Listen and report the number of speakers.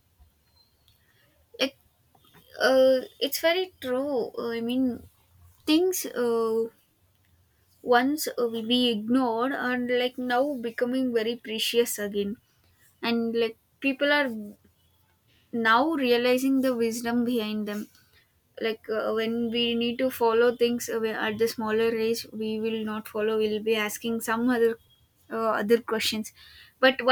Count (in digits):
1